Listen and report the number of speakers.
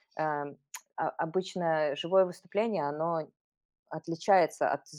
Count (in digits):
1